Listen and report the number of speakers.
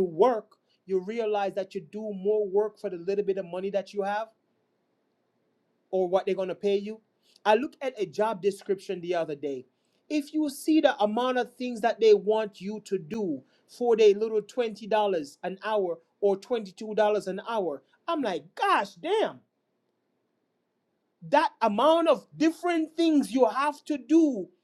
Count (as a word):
one